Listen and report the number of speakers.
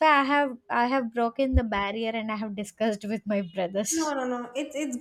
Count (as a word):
two